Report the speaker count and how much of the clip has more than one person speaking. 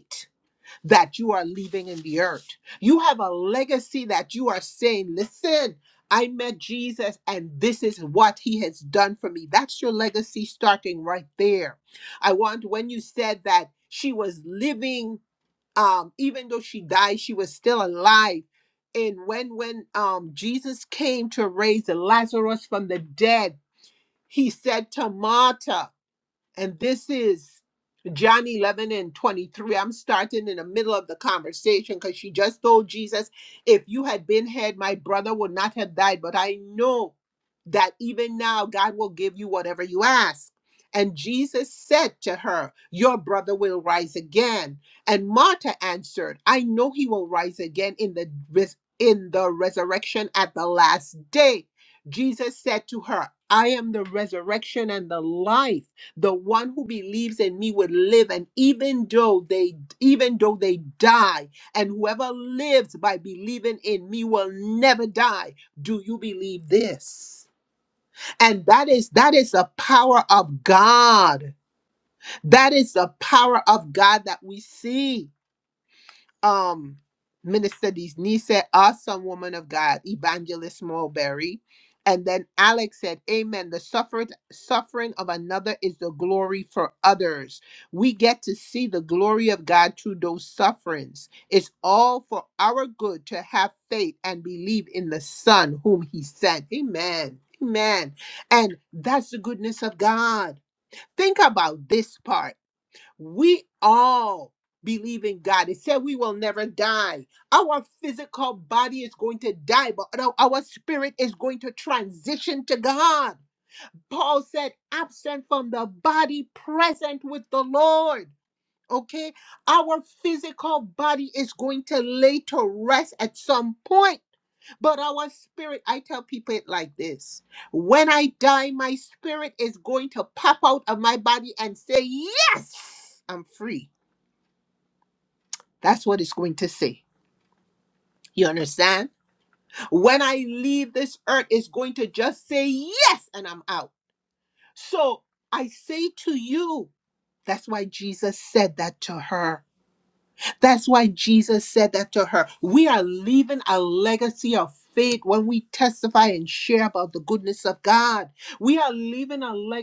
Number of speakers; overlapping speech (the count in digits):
1, no overlap